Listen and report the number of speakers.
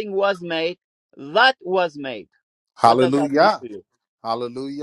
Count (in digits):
2